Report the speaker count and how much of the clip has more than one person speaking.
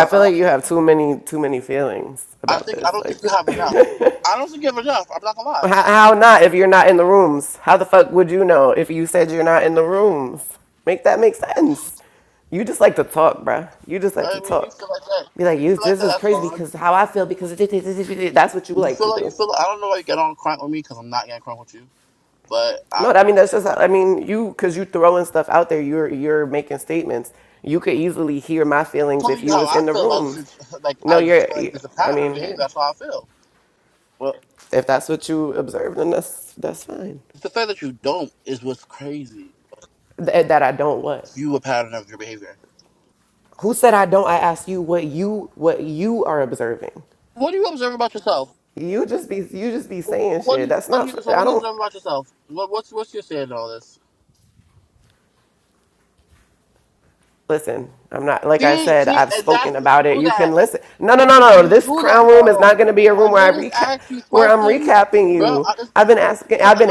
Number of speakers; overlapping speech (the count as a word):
two, about 21%